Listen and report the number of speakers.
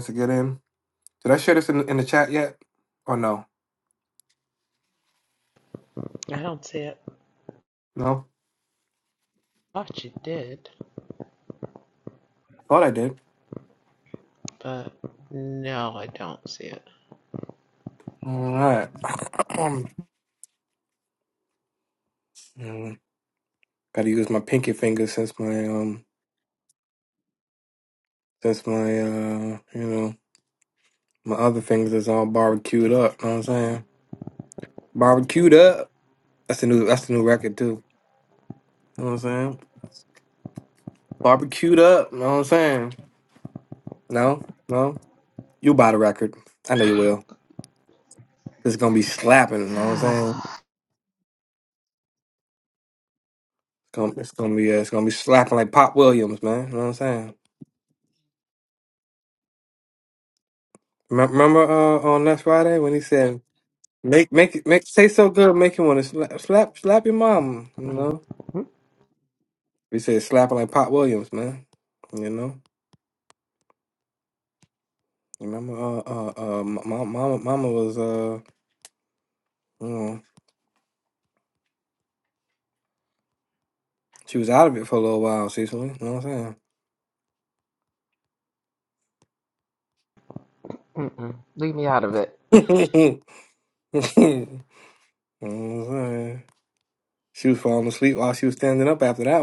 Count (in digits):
2